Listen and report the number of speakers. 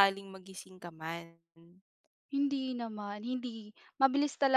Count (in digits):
2